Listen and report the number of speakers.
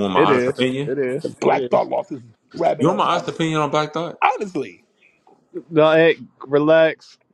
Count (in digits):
3